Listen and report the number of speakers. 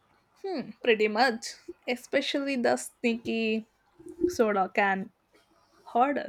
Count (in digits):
1